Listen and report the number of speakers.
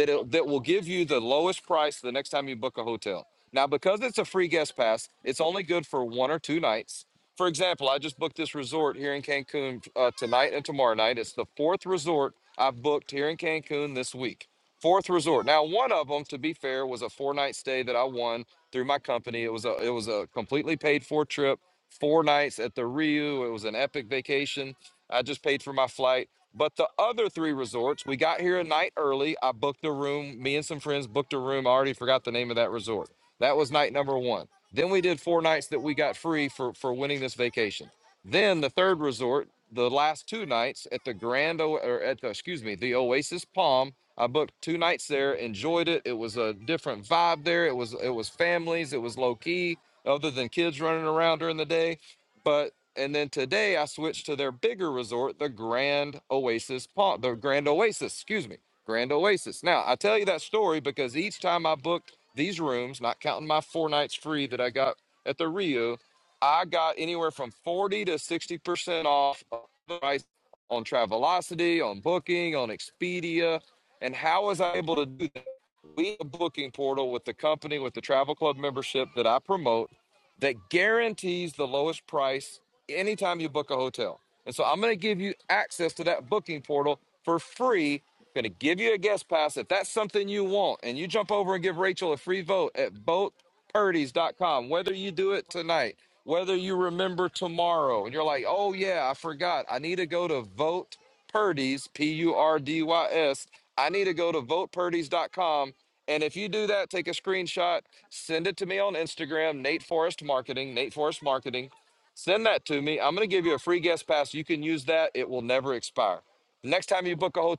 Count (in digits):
1